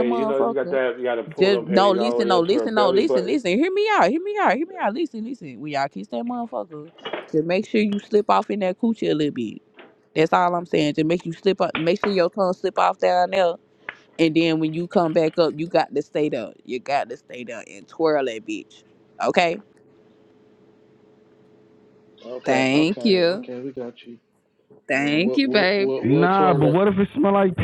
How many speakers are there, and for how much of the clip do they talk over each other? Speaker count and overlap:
4, about 20%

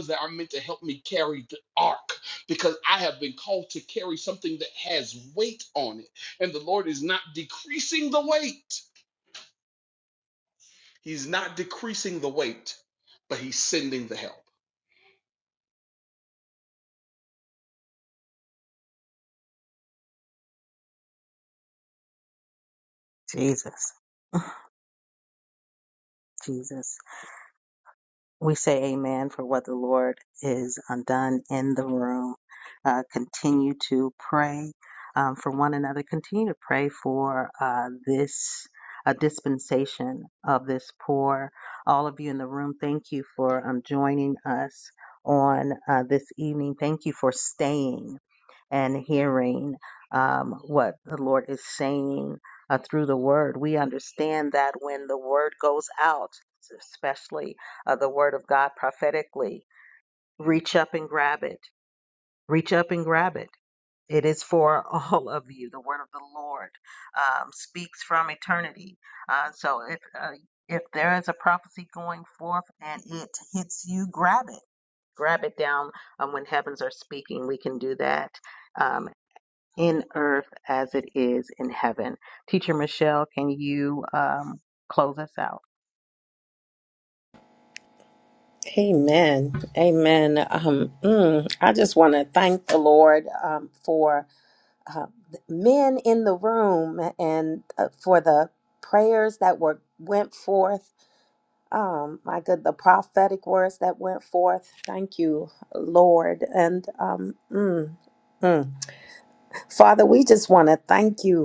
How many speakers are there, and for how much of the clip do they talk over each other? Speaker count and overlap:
3, no overlap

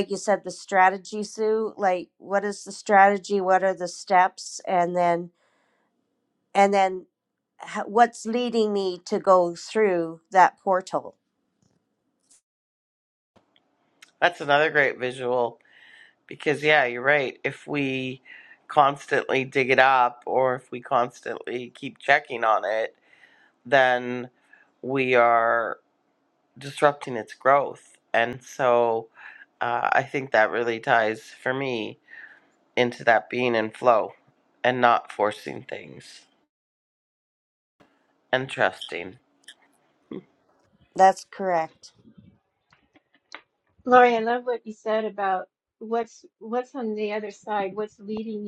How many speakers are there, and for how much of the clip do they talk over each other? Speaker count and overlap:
3, no overlap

